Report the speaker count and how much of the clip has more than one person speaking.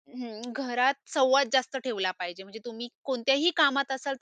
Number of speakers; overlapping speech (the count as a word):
one, no overlap